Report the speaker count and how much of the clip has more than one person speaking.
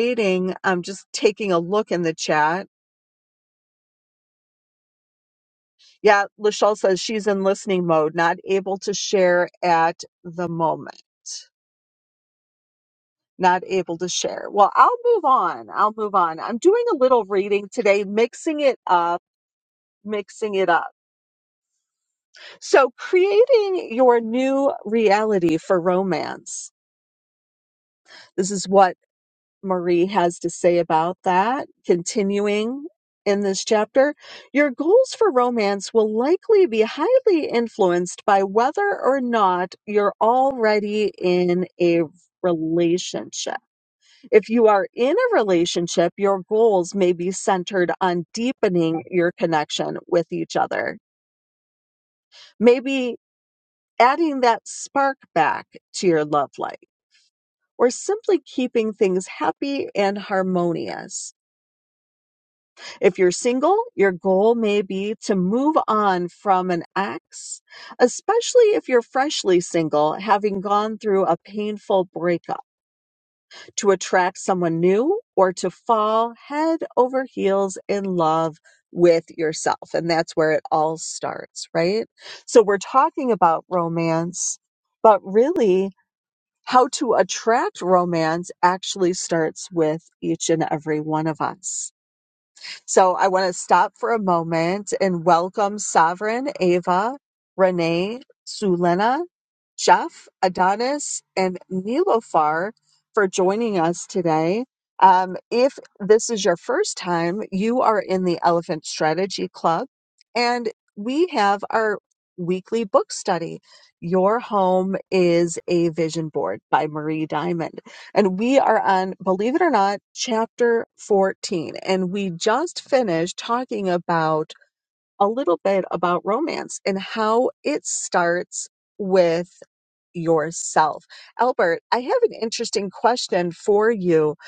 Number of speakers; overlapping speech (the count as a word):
one, no overlap